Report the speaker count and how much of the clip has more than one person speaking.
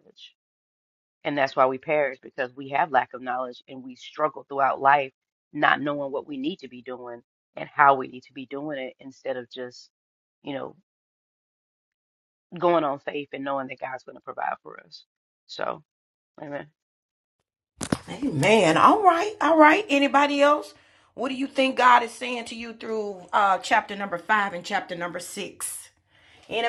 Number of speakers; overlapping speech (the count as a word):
two, no overlap